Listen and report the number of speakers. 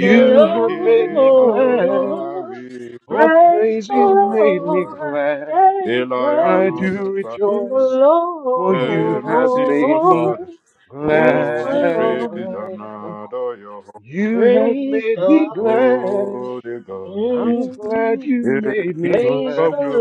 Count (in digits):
3